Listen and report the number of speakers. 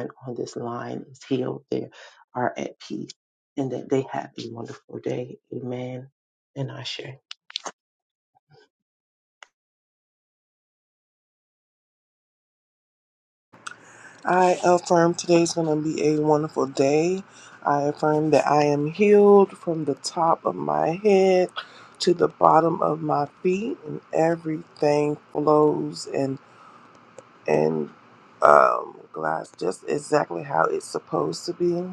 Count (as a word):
two